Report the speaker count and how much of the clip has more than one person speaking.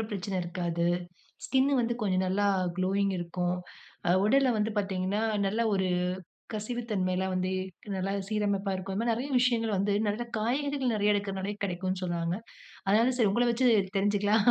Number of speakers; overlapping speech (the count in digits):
1, no overlap